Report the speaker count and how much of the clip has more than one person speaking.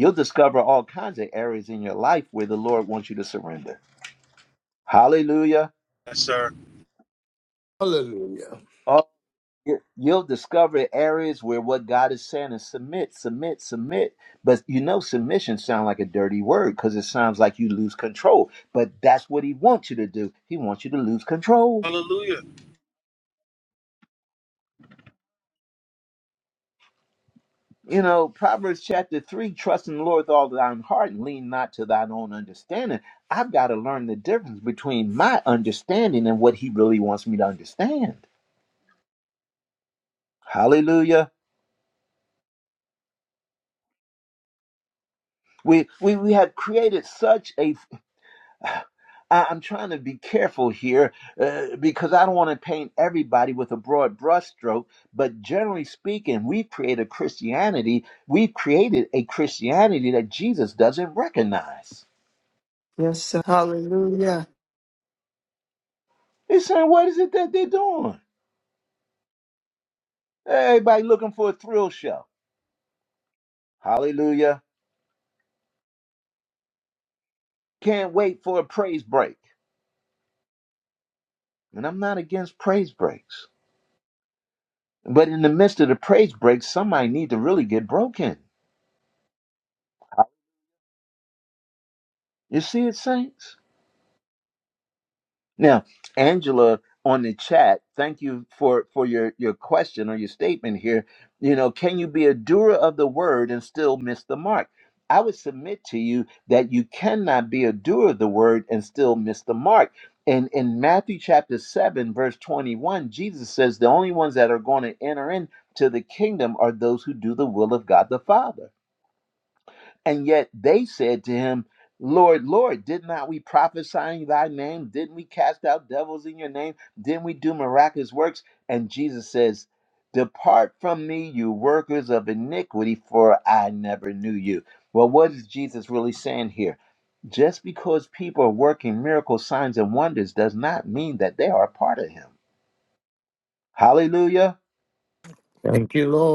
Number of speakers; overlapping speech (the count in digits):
4, under 1%